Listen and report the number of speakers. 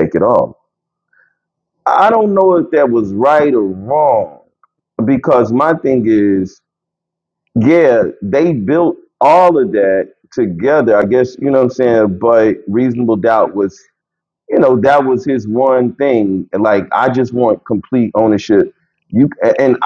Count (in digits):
1